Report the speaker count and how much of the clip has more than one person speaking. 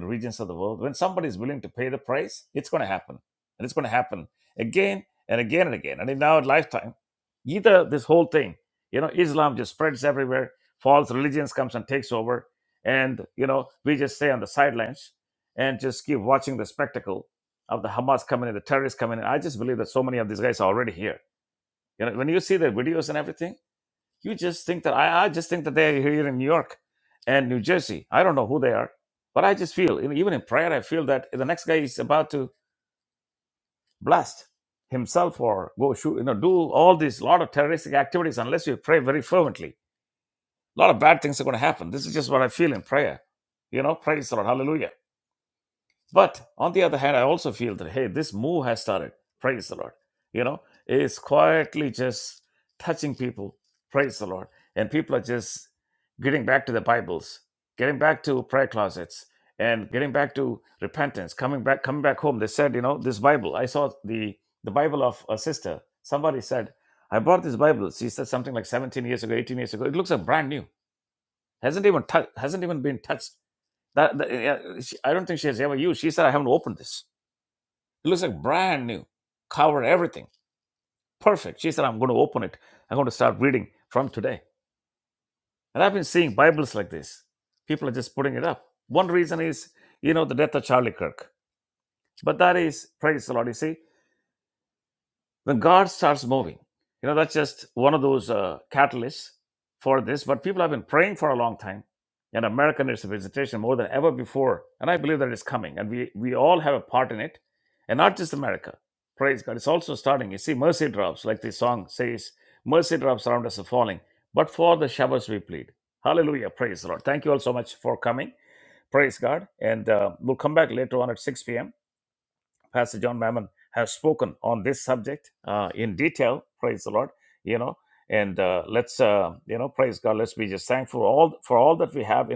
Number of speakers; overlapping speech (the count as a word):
one, no overlap